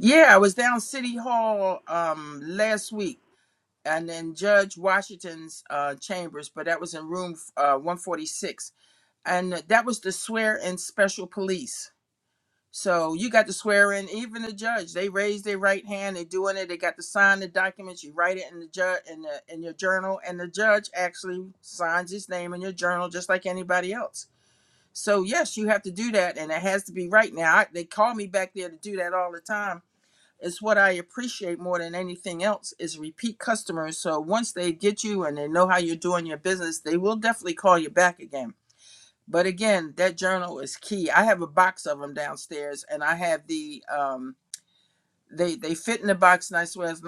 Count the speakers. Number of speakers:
1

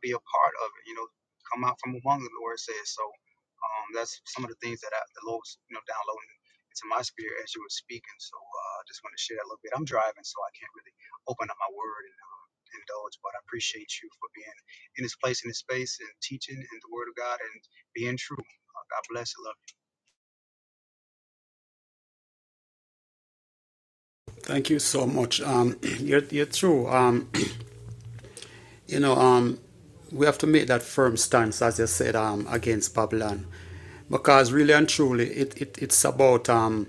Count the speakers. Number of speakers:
2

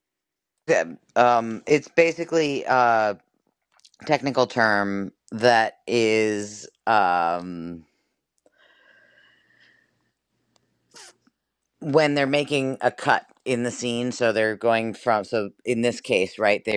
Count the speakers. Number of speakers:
1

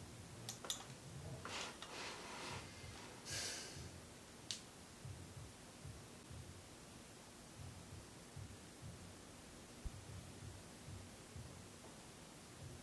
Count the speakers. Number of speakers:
0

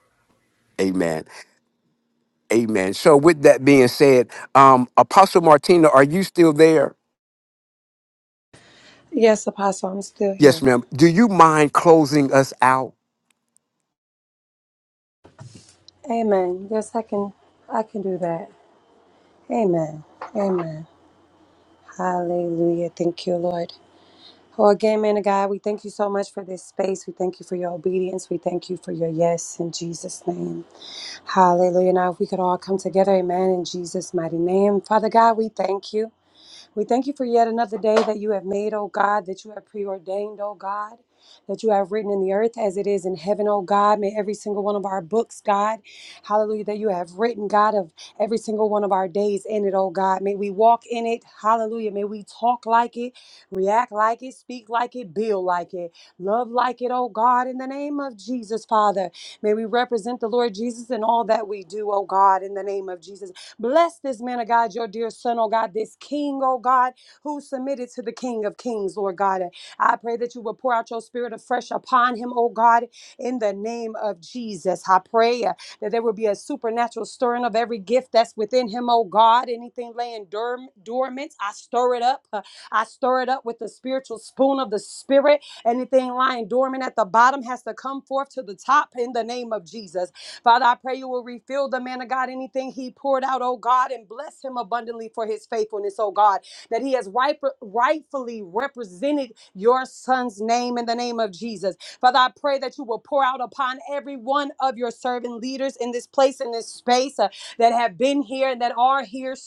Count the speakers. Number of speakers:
2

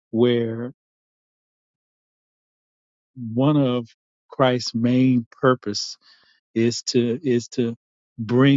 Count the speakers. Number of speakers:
1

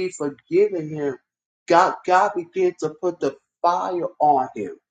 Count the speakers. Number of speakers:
1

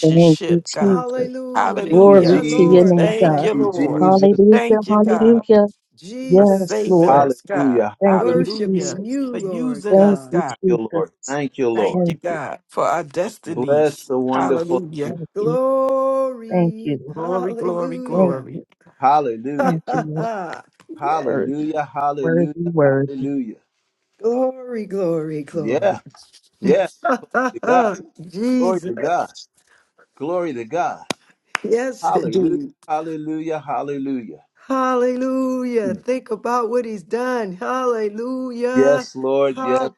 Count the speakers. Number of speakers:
4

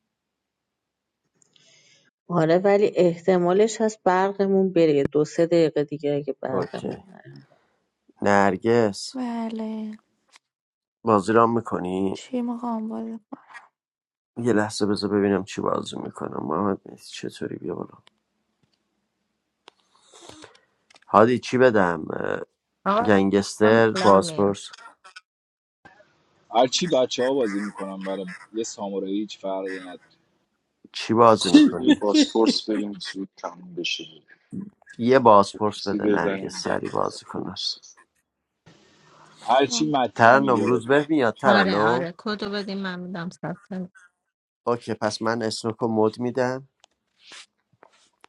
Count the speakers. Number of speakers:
6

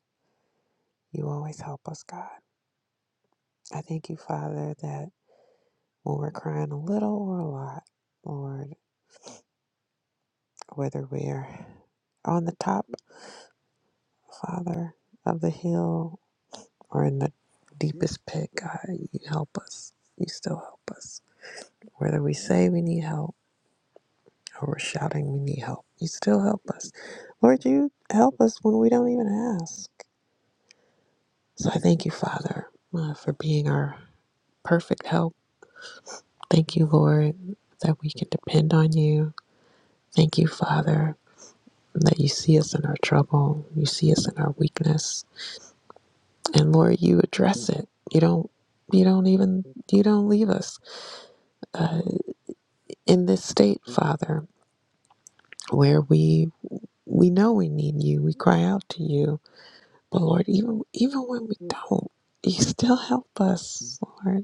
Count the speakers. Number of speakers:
1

